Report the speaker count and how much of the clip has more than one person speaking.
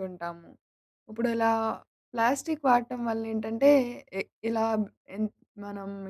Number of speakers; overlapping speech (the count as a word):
one, no overlap